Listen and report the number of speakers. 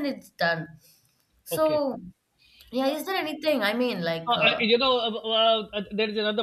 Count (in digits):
2